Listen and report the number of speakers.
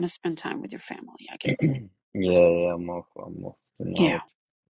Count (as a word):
two